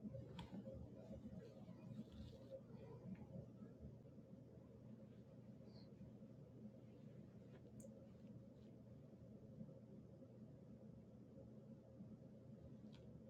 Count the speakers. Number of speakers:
0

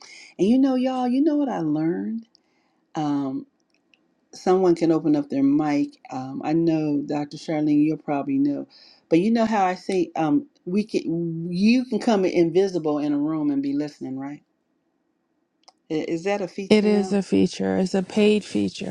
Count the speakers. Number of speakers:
2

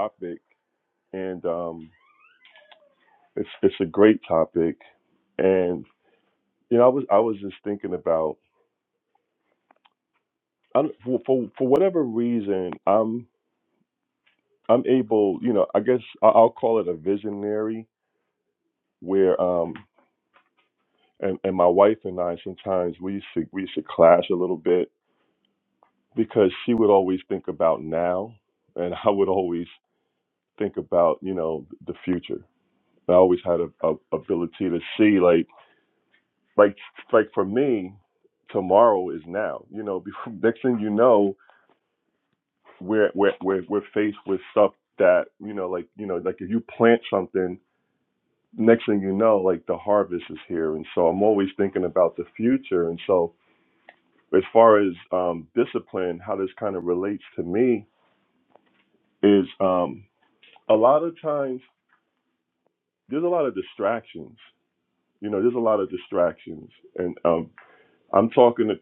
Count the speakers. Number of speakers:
1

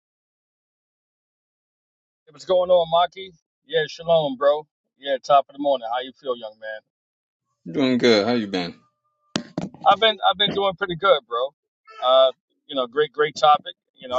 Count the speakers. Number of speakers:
2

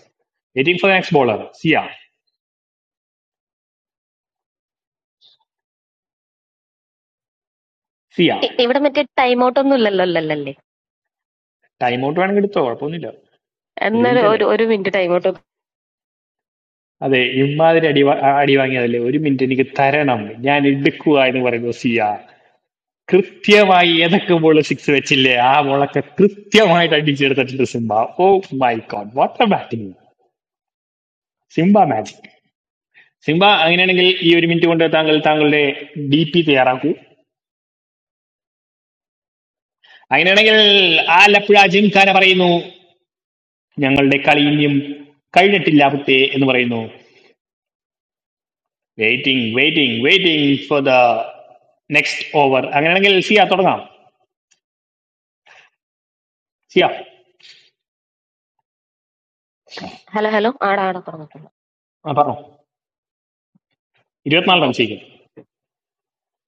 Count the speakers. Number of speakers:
2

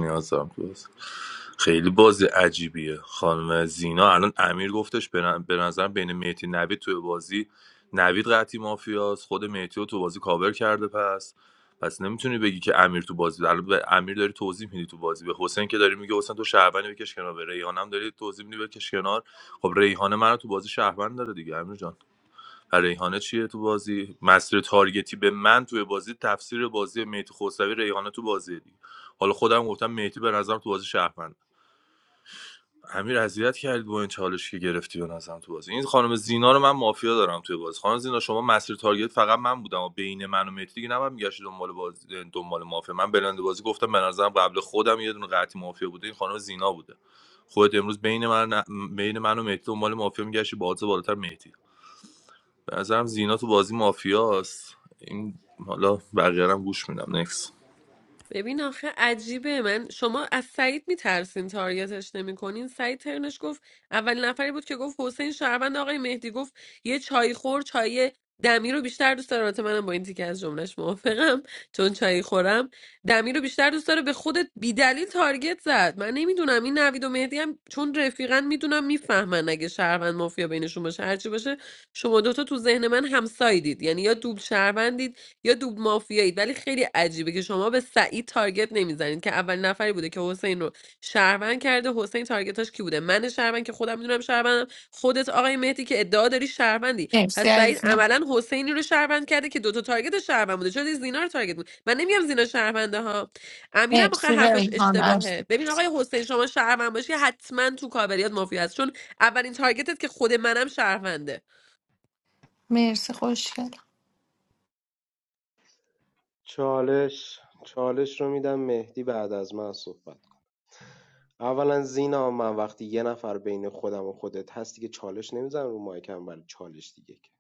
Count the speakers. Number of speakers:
4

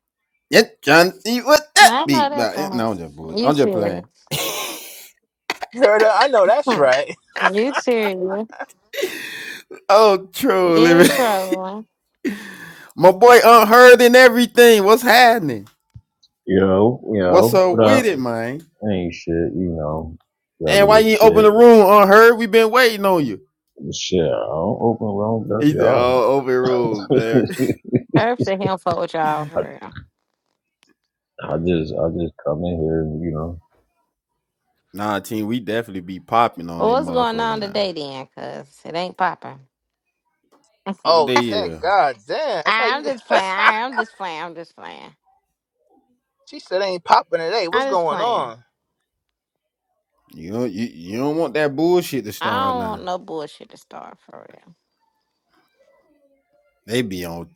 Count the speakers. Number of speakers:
4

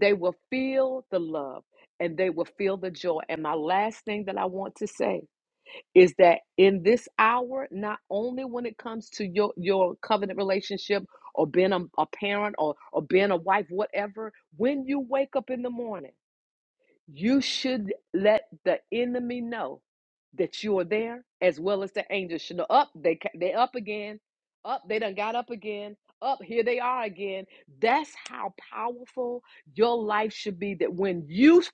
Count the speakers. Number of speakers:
1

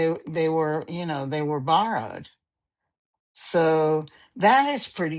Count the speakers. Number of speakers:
1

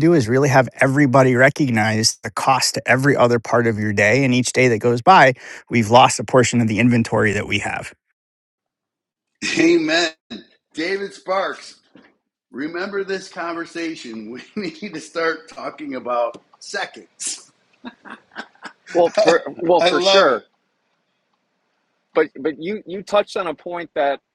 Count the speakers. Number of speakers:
3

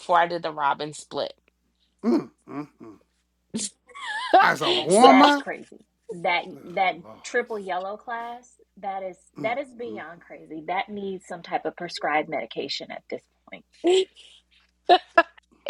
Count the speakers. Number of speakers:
3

